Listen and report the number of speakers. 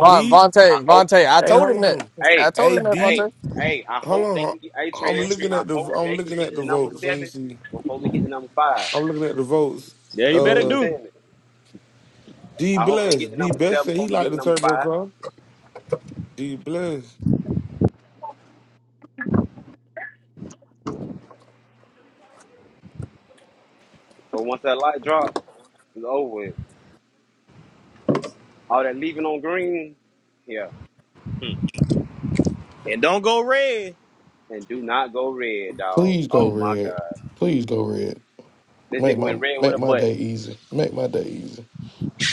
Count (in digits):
5